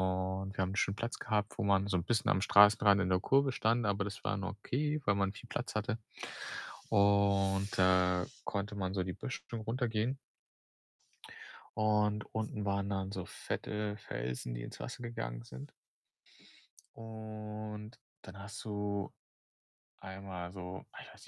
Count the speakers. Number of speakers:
1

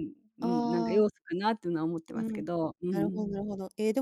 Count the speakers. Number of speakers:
2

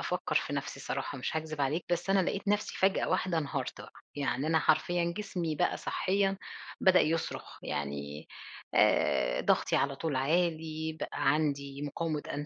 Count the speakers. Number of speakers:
1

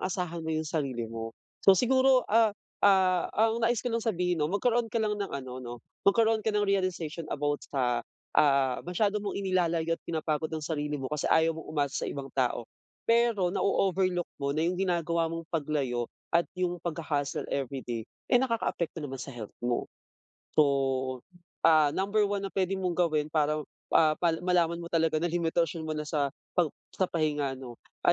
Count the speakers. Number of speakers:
1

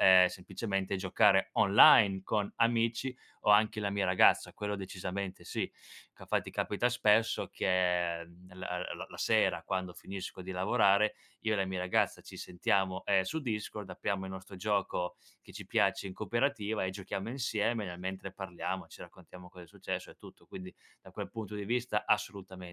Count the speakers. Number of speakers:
1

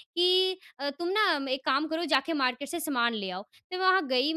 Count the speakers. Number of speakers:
1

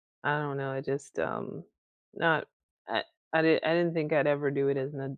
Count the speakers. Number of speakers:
1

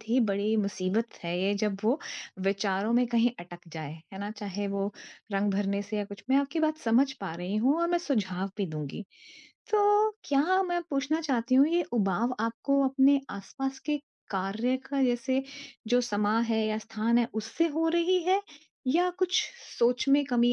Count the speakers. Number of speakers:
1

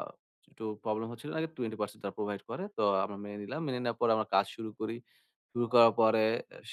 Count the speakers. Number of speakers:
1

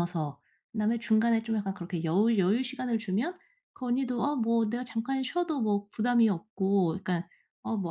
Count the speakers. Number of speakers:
1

